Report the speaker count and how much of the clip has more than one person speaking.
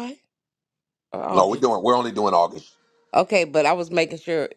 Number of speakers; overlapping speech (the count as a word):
two, about 7%